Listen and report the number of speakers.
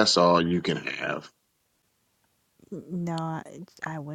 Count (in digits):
2